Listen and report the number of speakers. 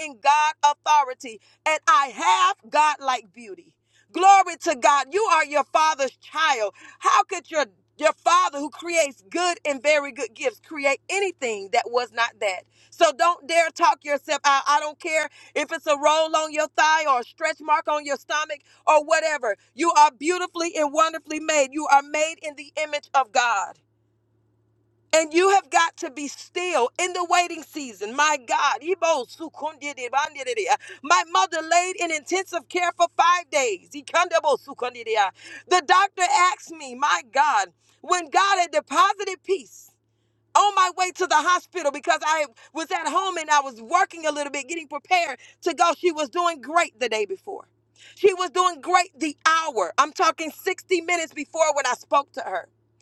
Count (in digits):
1